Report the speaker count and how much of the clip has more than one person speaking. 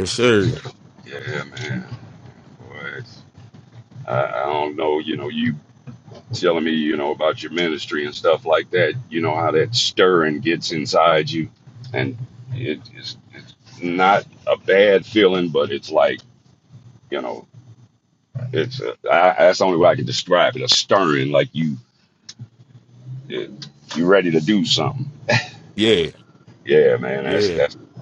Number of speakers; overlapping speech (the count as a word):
two, about 1%